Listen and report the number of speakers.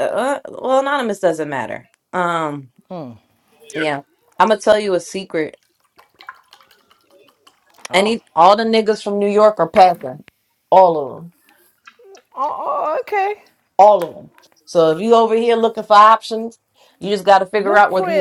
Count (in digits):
2